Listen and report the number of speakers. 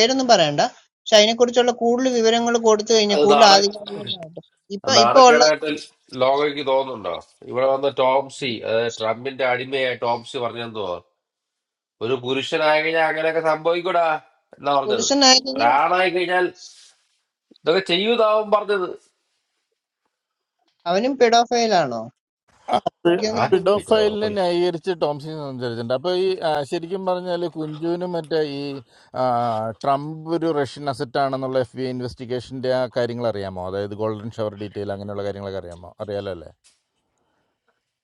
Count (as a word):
three